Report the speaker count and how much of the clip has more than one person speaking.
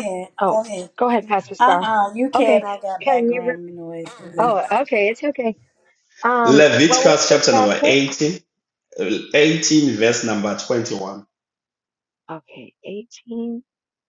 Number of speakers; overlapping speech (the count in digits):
3, about 21%